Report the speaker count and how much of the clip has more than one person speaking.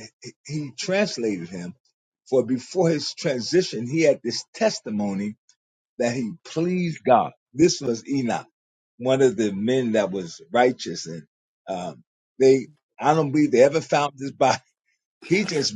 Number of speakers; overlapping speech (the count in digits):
1, no overlap